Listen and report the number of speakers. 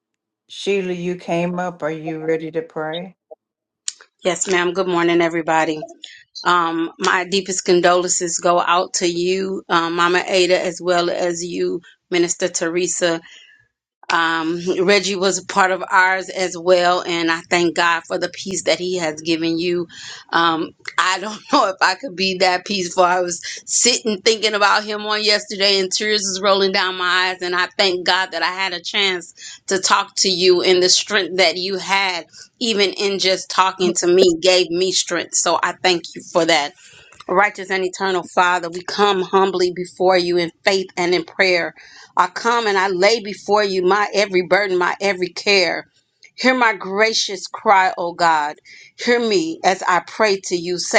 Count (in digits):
2